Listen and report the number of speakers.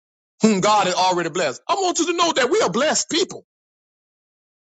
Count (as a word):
one